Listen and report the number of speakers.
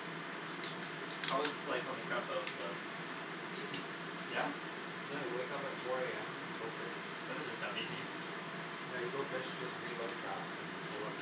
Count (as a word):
two